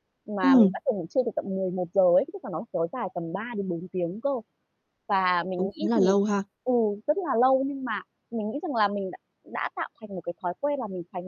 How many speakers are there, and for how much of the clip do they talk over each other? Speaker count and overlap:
two, about 7%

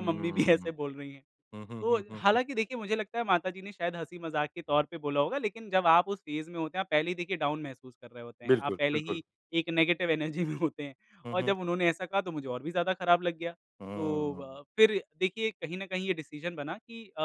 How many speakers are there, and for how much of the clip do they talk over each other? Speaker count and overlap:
two, about 14%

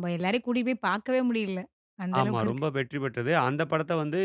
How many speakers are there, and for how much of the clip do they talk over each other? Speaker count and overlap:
two, about 11%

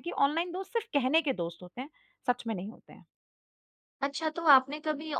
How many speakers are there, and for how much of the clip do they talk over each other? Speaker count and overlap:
two, no overlap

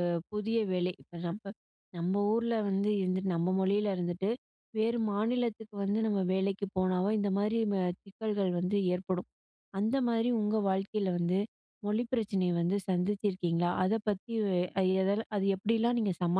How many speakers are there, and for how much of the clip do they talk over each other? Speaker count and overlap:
one, no overlap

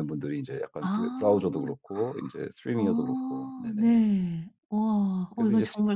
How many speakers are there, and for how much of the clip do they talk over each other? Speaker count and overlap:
two, about 34%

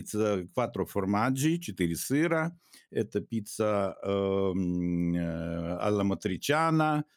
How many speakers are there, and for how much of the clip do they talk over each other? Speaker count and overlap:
one, no overlap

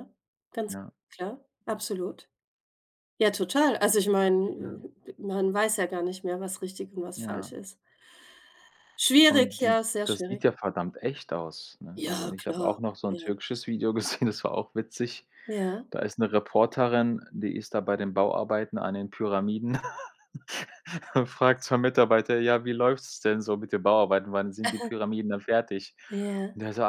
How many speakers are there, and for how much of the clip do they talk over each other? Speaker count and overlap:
two, about 10%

